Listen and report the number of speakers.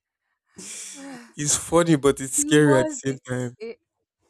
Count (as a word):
two